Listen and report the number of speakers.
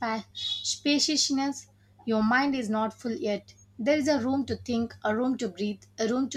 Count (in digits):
1